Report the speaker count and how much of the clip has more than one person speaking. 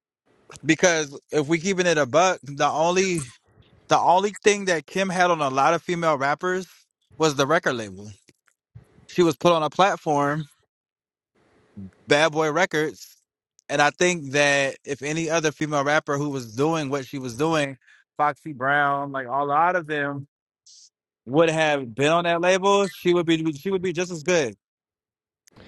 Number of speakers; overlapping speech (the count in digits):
1, no overlap